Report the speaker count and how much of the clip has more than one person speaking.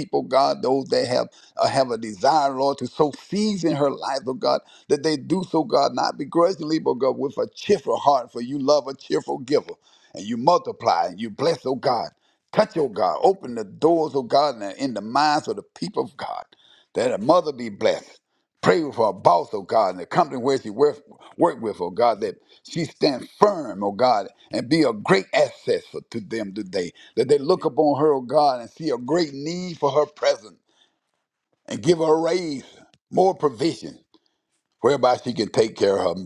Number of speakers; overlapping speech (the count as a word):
one, no overlap